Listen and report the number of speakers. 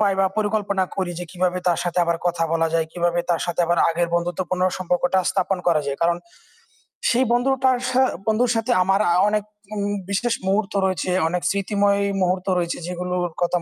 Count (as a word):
one